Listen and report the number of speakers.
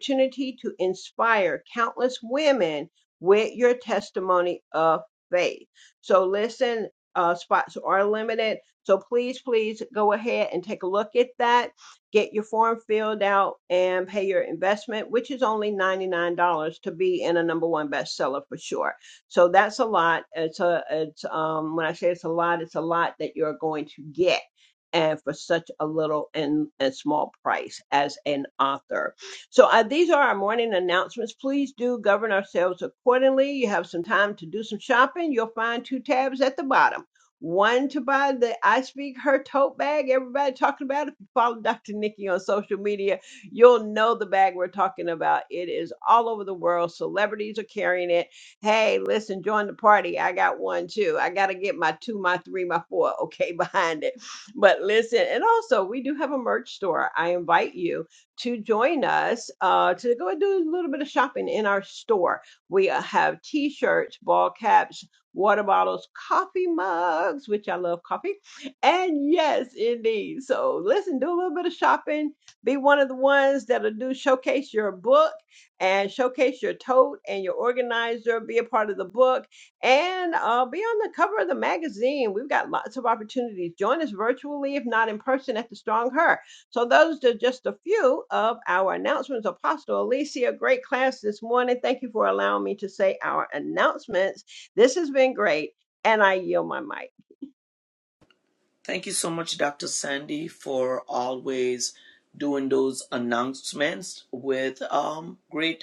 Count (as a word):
two